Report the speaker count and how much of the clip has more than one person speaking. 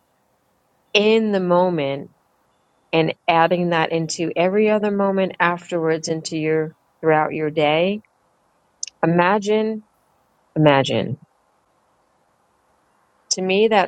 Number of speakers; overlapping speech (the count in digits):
1, no overlap